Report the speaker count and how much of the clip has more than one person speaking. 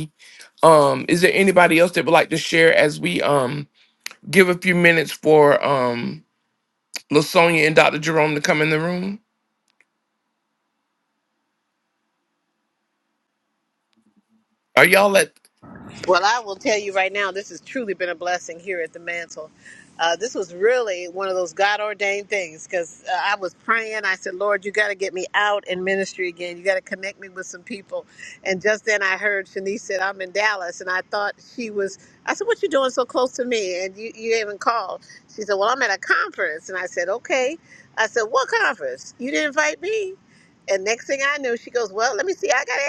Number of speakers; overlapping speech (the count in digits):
2, no overlap